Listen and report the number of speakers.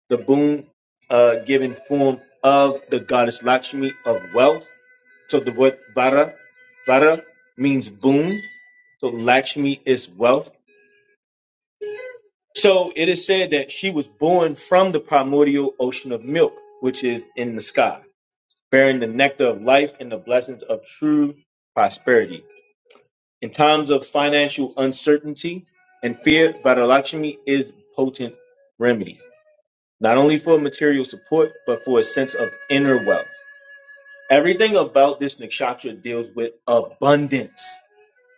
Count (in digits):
1